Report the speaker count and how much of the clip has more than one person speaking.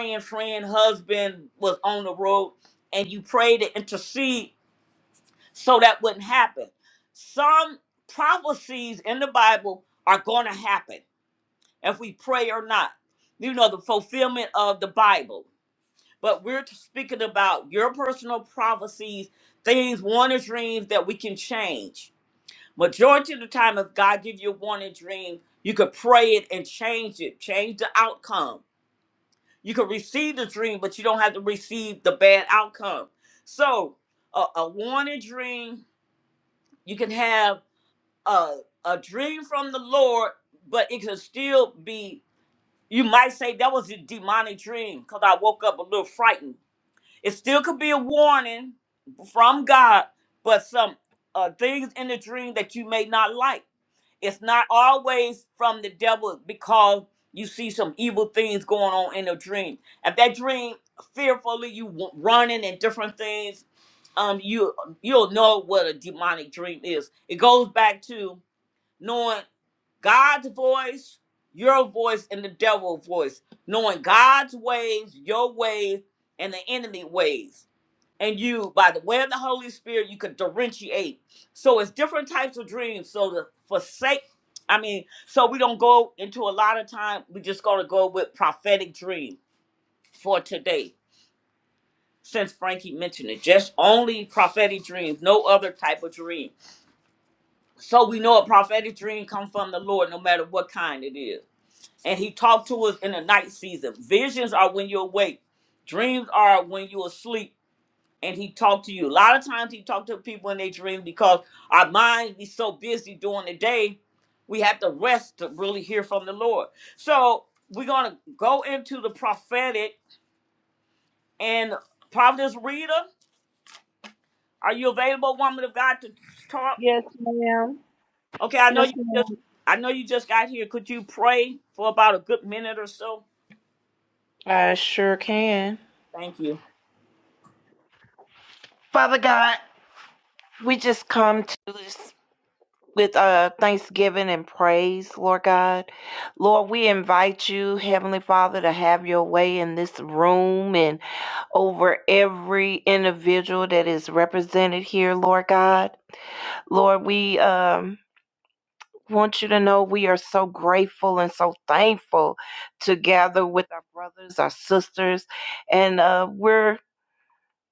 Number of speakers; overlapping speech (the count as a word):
two, under 1%